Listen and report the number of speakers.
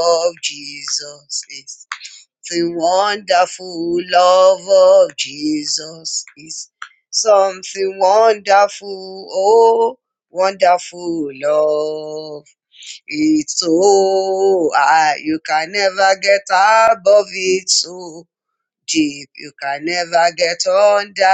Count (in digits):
1